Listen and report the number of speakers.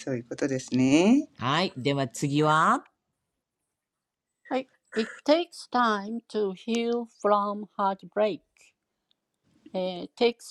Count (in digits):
3